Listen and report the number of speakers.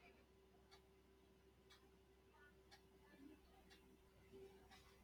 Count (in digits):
0